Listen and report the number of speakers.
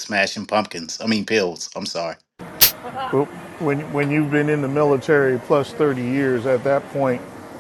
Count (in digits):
2